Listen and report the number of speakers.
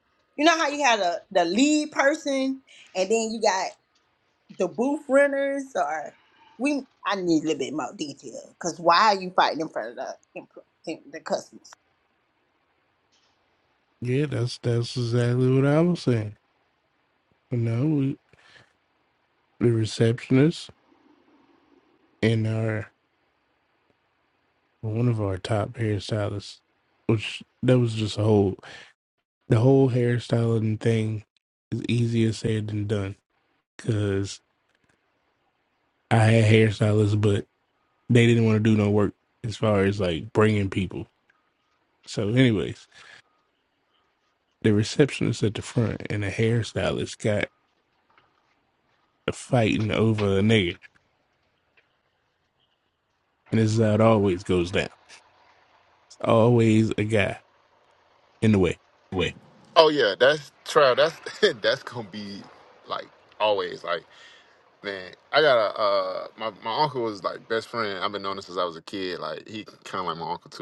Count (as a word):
three